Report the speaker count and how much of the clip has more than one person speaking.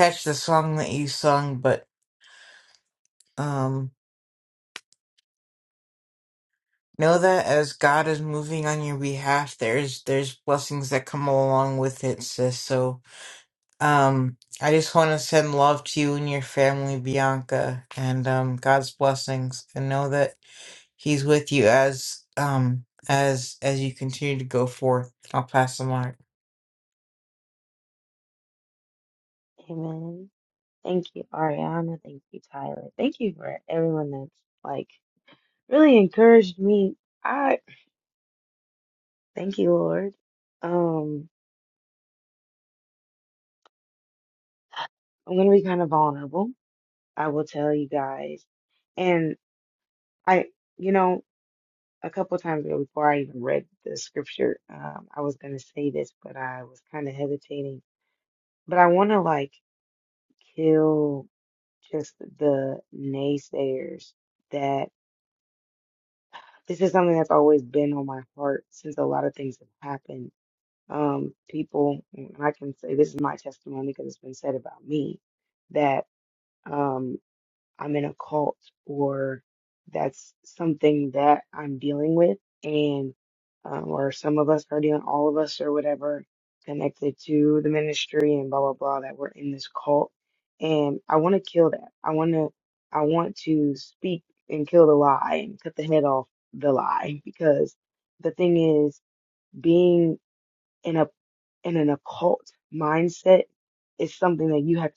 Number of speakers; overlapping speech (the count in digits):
2, no overlap